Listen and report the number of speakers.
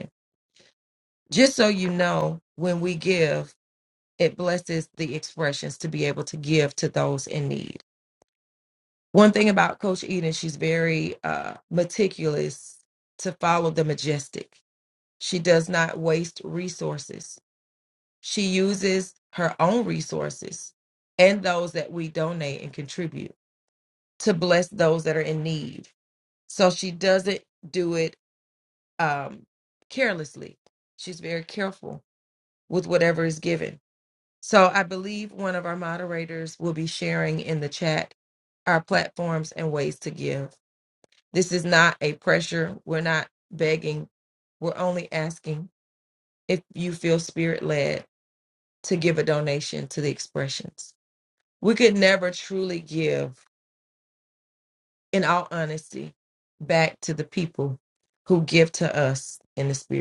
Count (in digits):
1